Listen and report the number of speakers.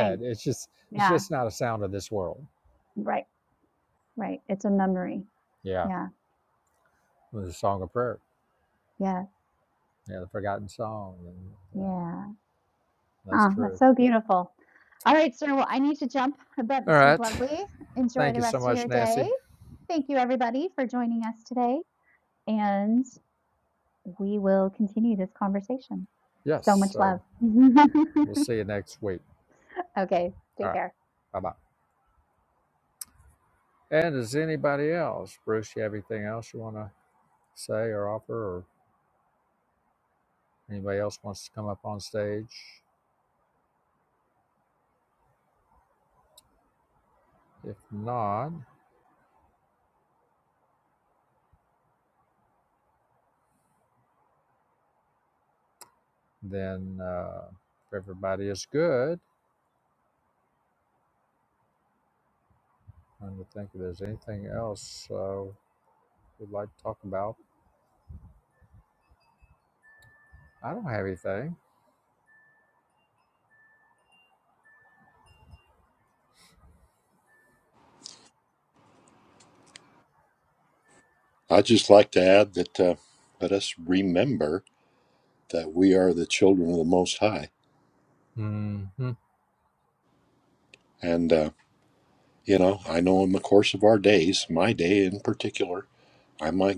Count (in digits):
3